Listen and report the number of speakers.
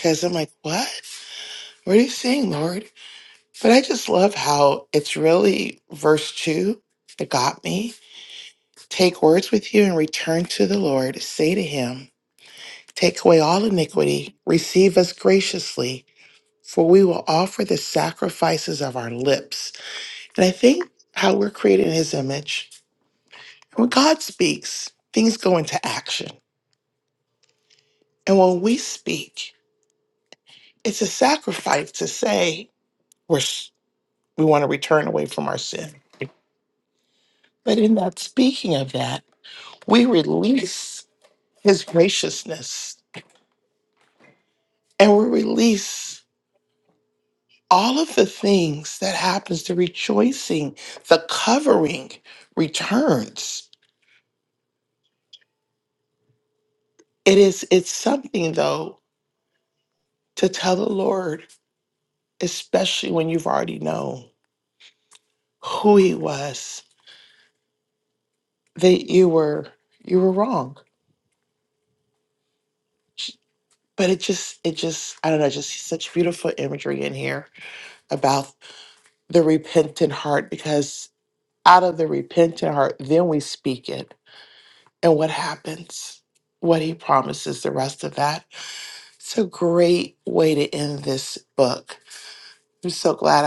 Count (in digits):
1